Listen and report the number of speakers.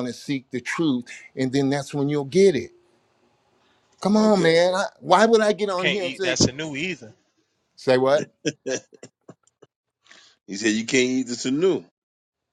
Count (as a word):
three